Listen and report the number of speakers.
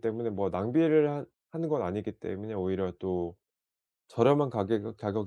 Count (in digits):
1